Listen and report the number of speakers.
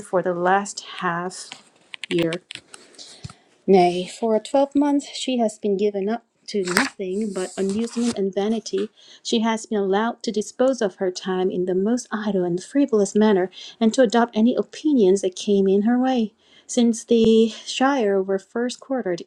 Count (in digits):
1